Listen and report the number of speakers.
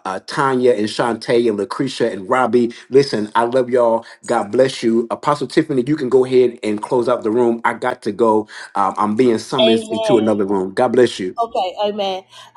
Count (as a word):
two